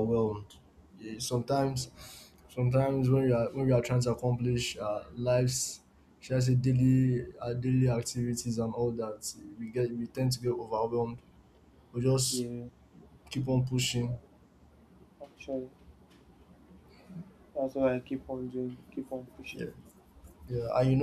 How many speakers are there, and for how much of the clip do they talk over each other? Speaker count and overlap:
2, about 1%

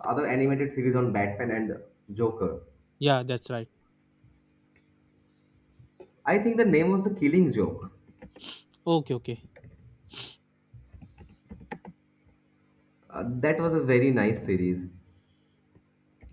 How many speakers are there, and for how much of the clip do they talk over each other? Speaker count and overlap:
2, no overlap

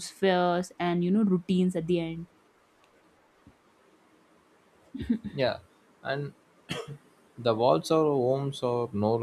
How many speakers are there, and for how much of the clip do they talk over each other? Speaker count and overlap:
2, no overlap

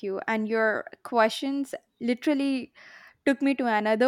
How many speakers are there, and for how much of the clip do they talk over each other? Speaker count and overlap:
1, no overlap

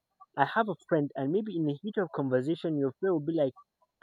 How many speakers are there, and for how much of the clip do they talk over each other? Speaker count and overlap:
1, no overlap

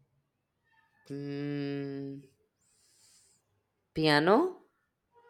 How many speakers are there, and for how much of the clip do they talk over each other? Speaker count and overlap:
1, no overlap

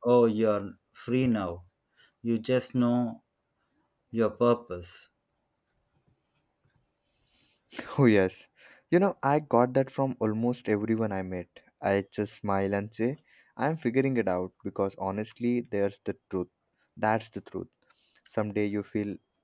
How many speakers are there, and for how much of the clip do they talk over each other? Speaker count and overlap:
2, no overlap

